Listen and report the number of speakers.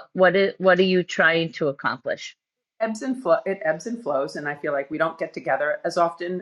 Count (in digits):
2